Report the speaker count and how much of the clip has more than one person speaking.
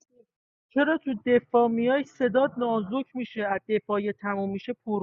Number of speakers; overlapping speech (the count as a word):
one, no overlap